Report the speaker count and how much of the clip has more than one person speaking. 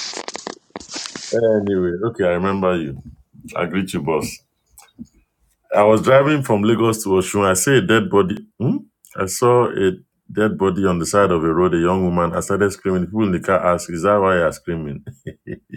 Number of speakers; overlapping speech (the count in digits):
1, no overlap